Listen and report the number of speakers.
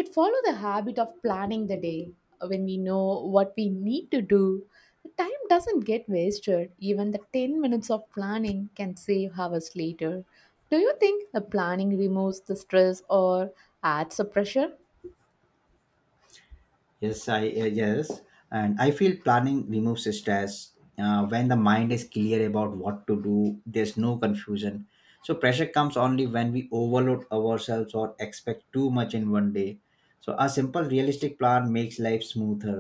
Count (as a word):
two